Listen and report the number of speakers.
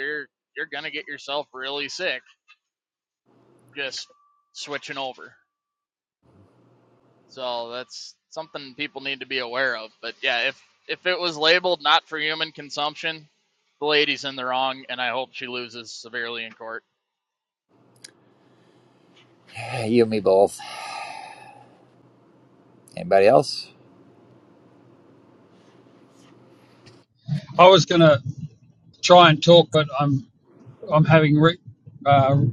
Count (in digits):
3